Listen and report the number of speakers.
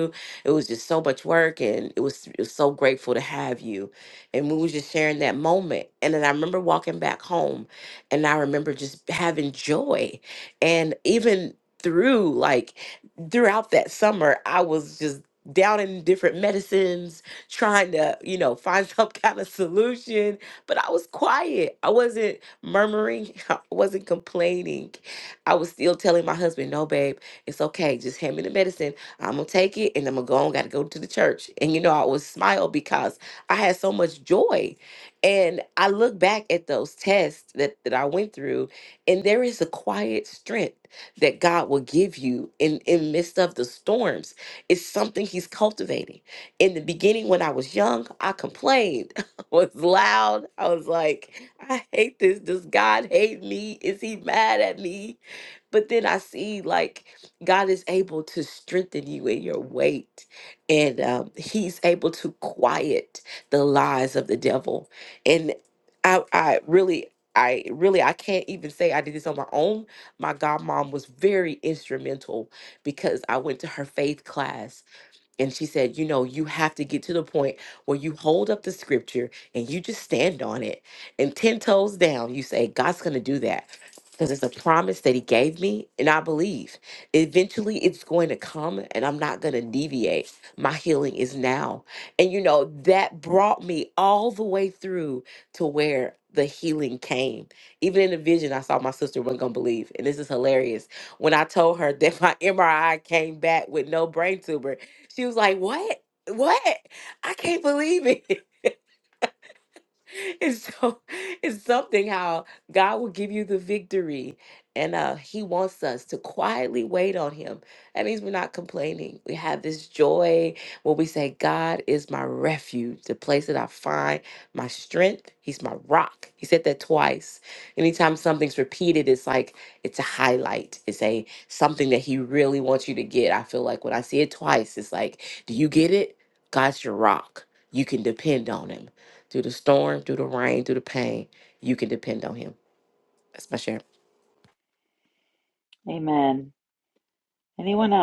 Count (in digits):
2